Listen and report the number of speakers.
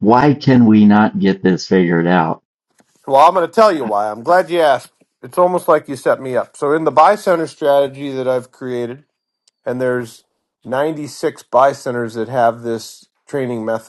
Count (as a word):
two